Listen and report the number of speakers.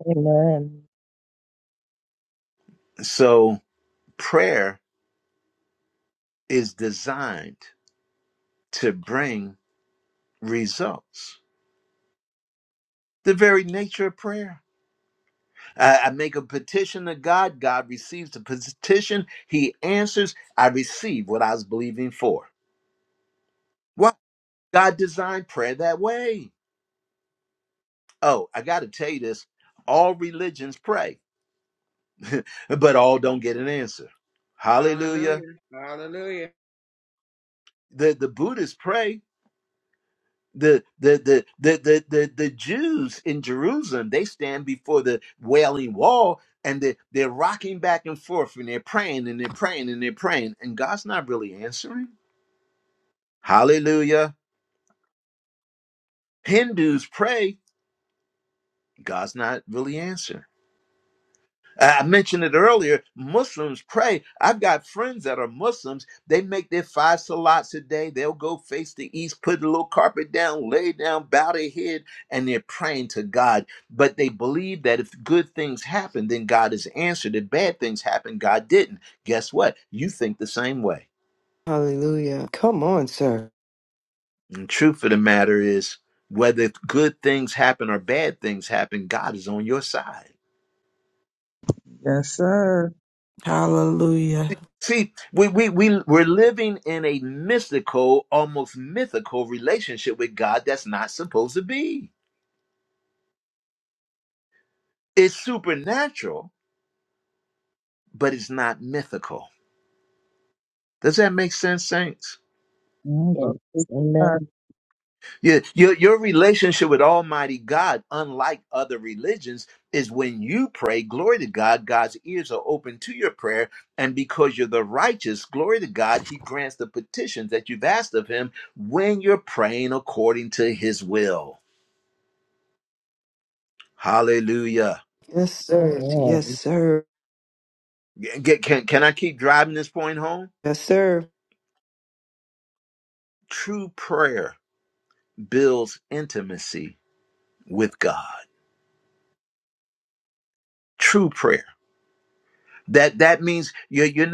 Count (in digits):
6